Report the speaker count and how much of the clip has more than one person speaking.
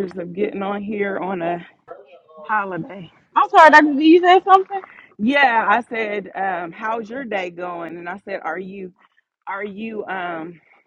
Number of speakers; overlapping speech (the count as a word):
two, no overlap